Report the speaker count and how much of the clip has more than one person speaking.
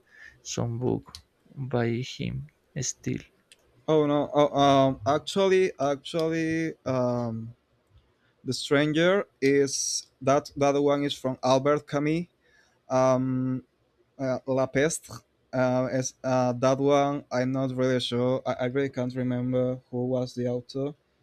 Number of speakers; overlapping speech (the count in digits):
2, no overlap